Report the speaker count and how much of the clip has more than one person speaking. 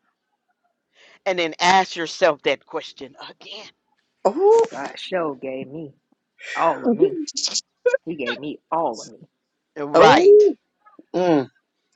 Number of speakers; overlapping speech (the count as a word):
three, about 5%